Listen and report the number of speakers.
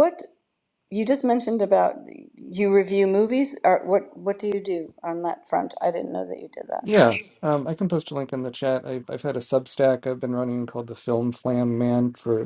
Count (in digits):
2